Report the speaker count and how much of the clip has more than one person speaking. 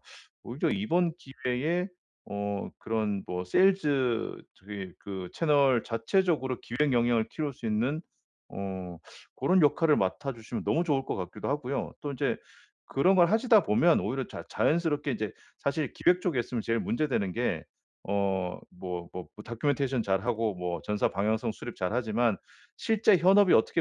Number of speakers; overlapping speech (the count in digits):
1, no overlap